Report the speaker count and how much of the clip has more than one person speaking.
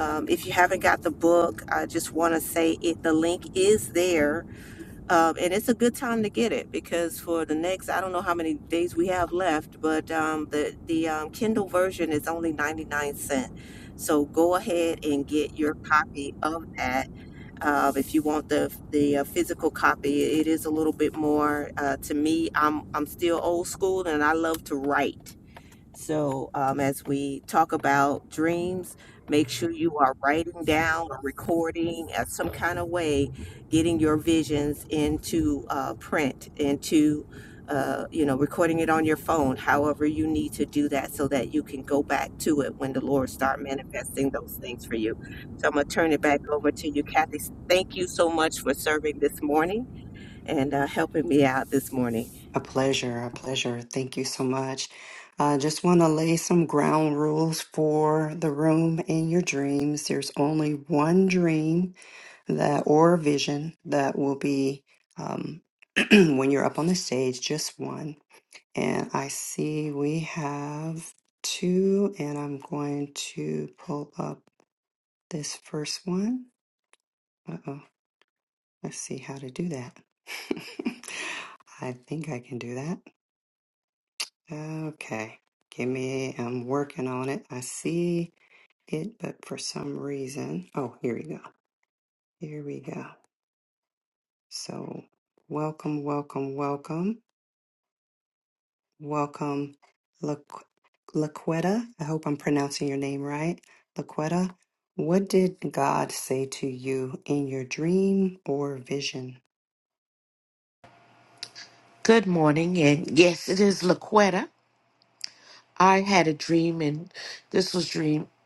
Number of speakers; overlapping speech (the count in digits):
3, no overlap